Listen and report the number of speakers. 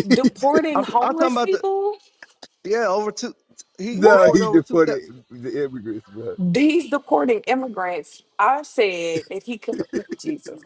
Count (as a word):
three